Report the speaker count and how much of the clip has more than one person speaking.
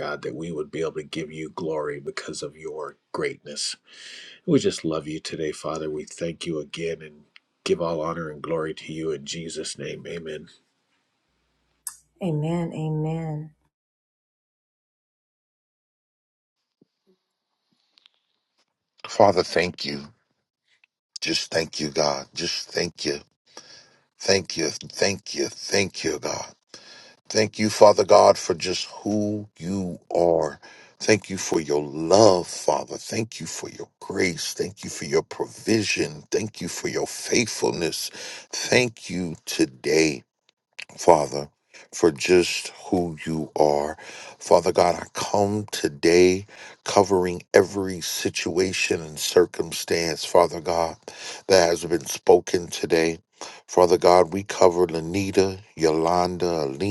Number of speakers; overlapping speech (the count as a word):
three, no overlap